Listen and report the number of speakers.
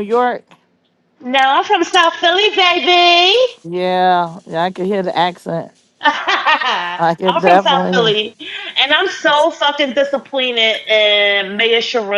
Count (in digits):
2